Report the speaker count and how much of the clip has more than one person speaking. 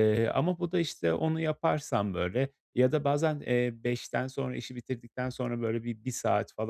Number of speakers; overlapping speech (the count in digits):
1, no overlap